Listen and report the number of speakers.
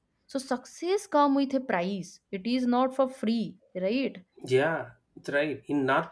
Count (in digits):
2